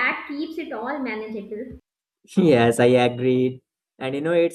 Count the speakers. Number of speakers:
2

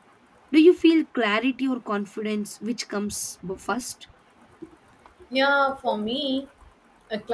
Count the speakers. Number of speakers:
2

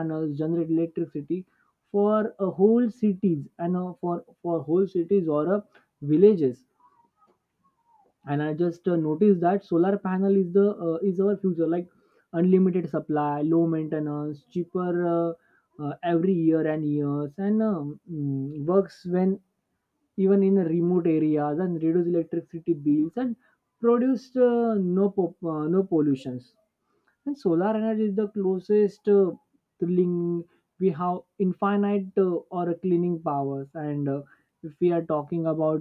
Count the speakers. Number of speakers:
1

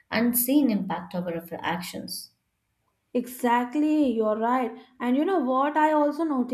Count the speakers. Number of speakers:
2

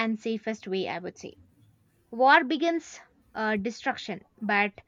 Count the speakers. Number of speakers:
1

